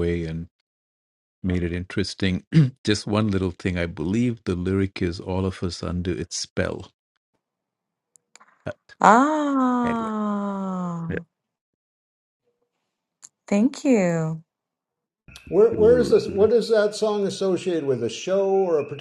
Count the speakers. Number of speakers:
3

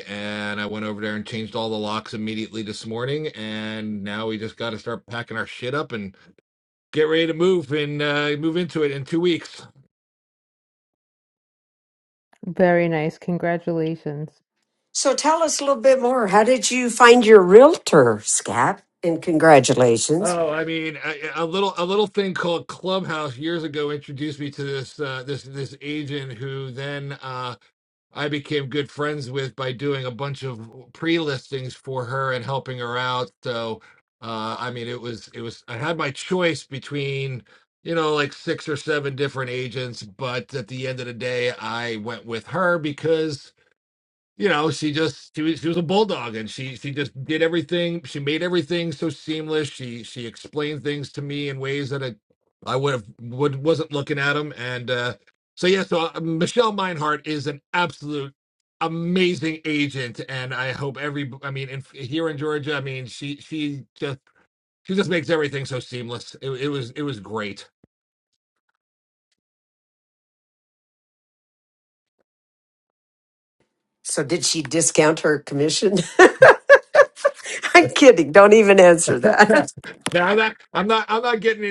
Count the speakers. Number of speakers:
3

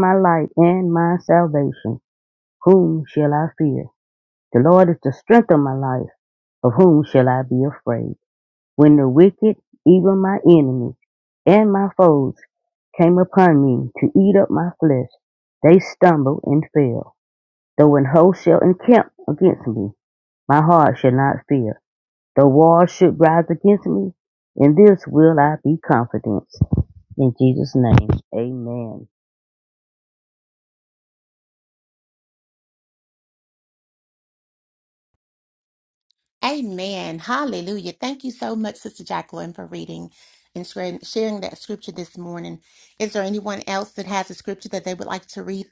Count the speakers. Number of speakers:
2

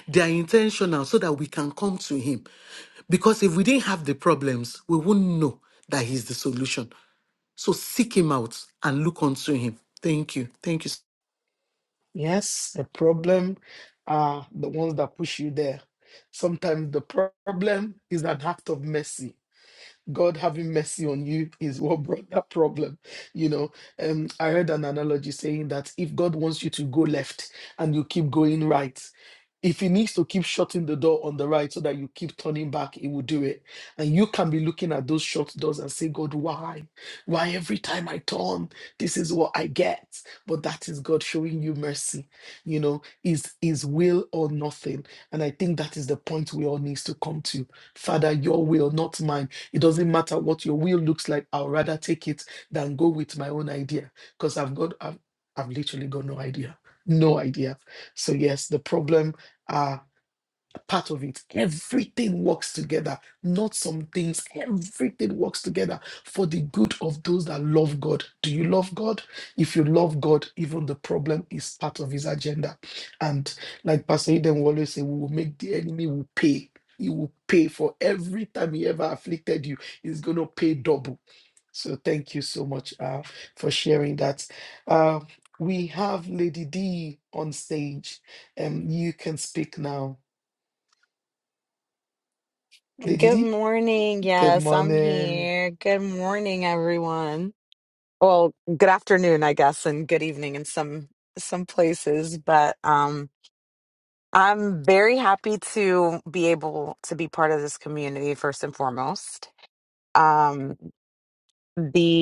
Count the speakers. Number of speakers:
3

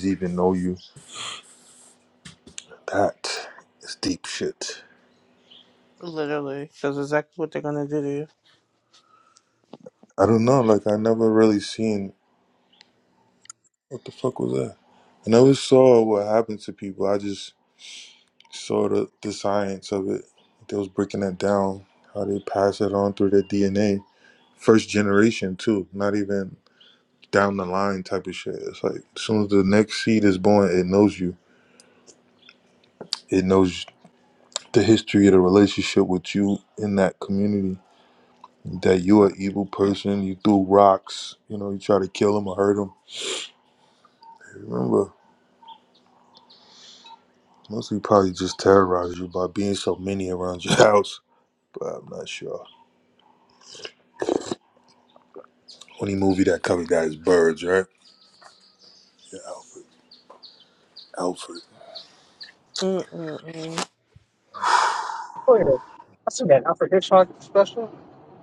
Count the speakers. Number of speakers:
3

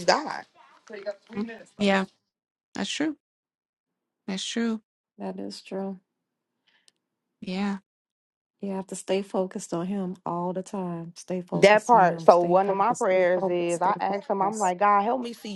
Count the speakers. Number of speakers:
3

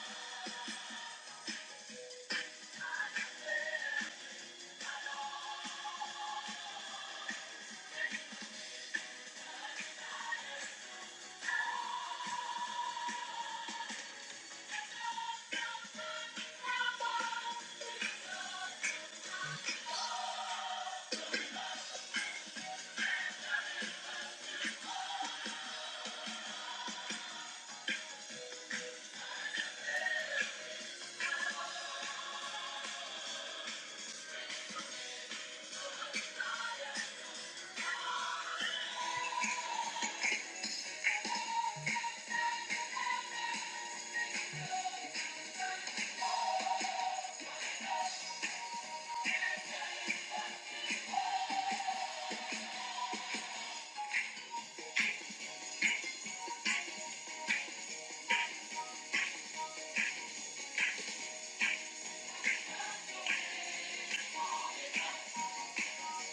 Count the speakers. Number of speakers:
0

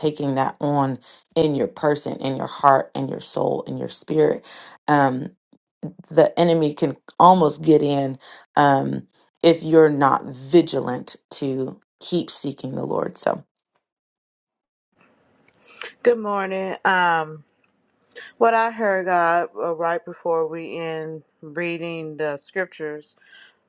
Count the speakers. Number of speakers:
2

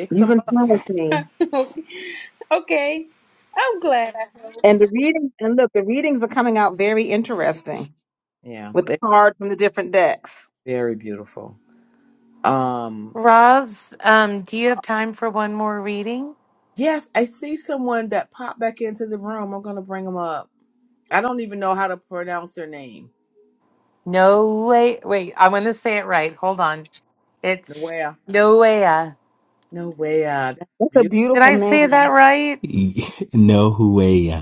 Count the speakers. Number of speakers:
5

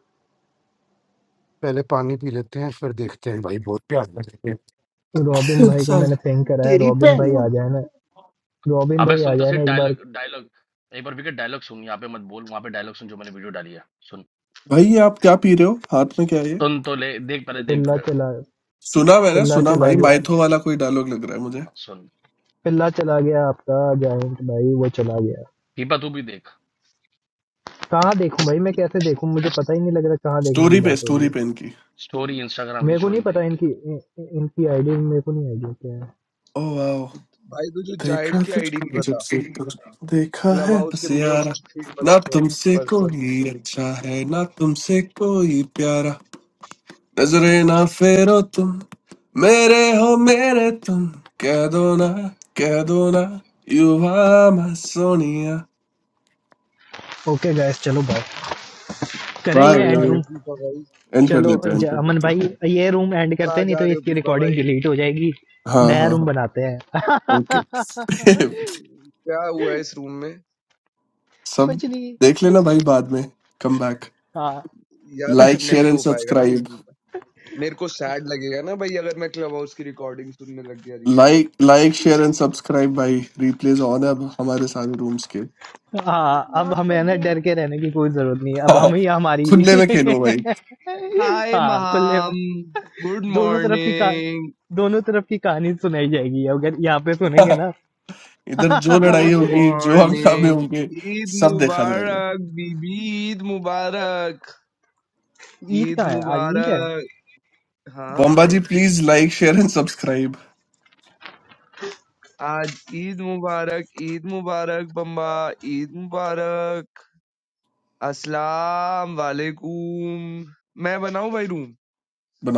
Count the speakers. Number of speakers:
5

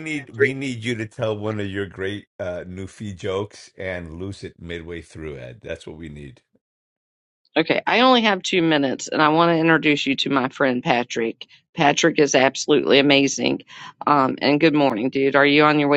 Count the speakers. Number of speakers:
2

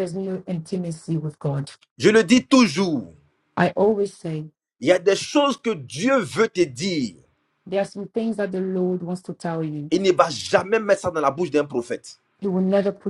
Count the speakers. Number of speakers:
2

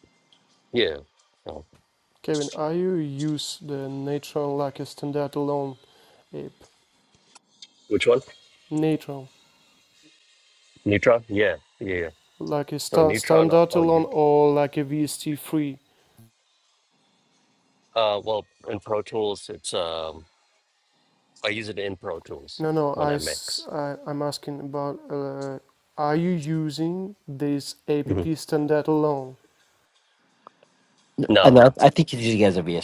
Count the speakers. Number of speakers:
3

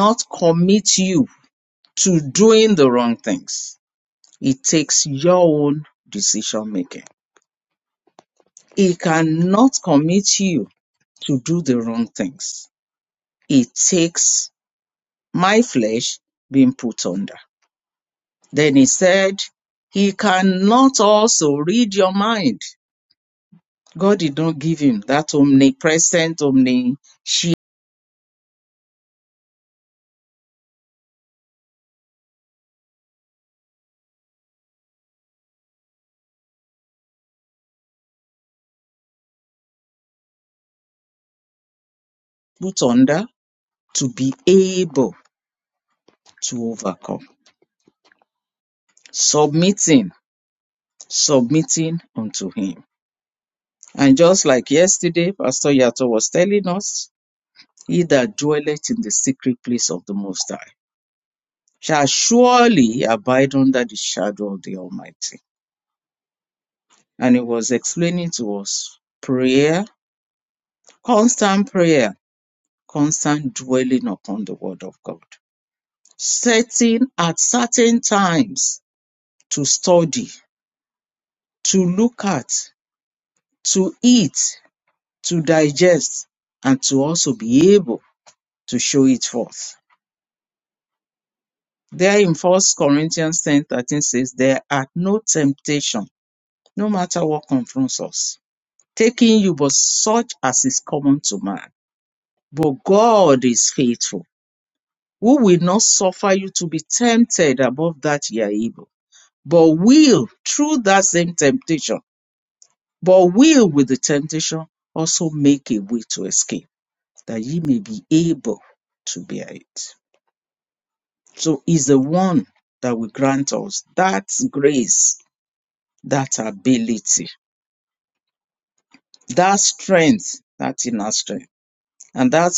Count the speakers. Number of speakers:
1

